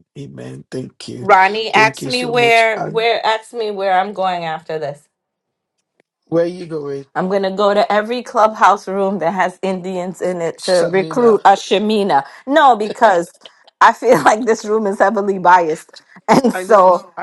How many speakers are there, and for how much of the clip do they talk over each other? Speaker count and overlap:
two, about 17%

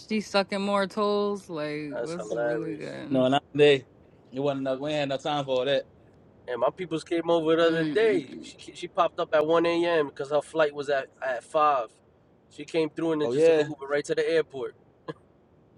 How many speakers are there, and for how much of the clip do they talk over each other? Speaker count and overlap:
three, about 15%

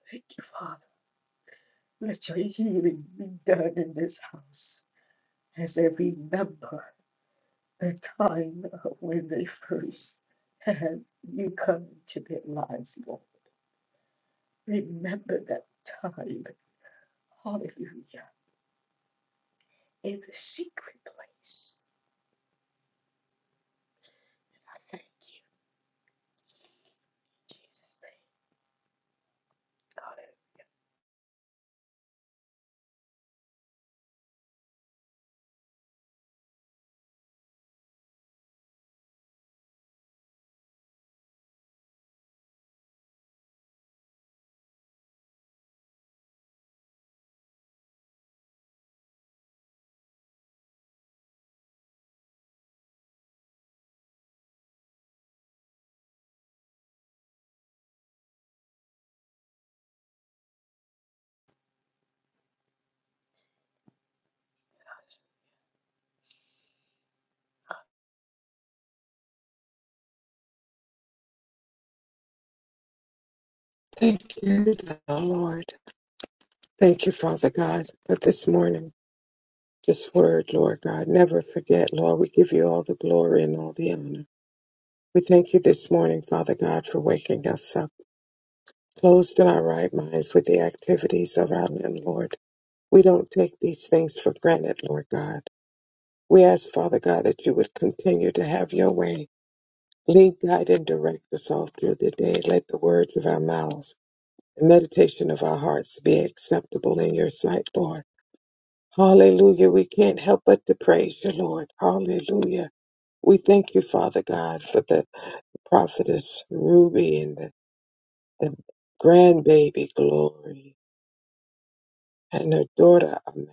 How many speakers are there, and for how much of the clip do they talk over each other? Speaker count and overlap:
two, no overlap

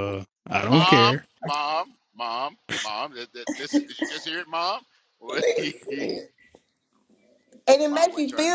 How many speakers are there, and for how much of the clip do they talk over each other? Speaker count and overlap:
three, about 14%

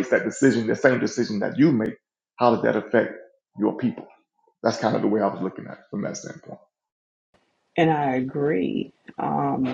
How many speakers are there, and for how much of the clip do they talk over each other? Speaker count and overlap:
two, no overlap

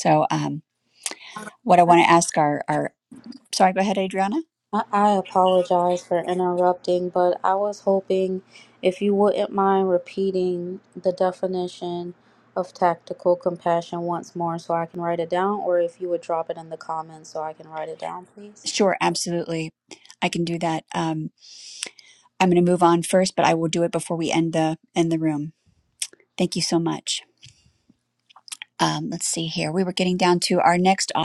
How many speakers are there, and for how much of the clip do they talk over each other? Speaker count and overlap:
two, no overlap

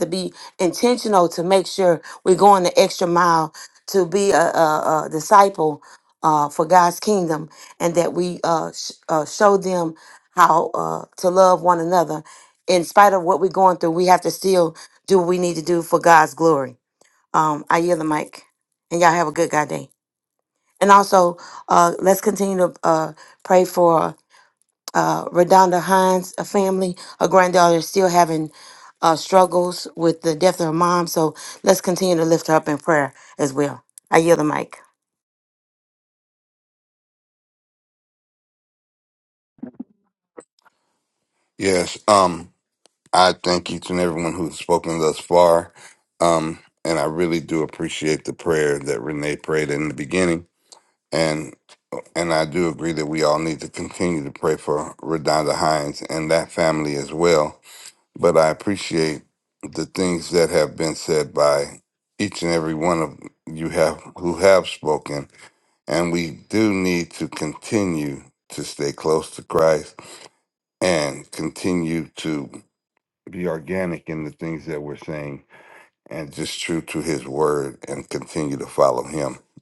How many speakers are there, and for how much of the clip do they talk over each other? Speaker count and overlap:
two, no overlap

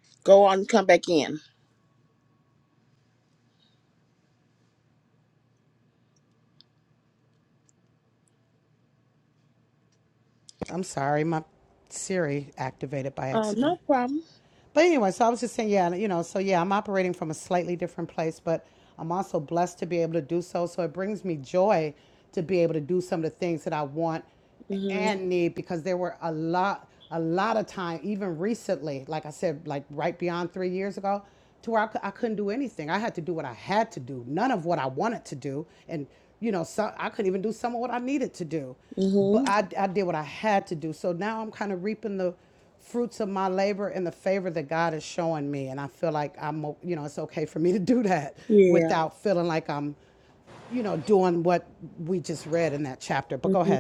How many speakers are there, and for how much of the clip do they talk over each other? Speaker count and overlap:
two, about 3%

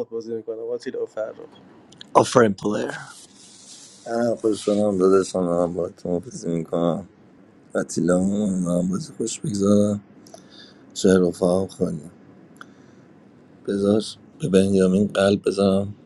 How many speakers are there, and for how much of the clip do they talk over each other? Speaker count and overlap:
two, no overlap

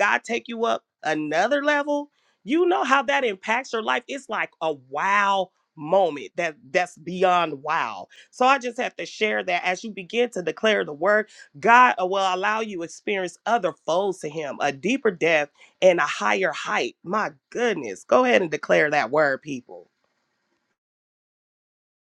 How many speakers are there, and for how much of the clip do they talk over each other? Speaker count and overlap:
one, no overlap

